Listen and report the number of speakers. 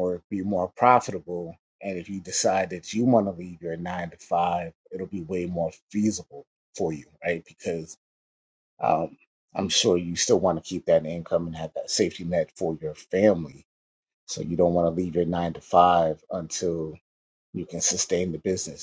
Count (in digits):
1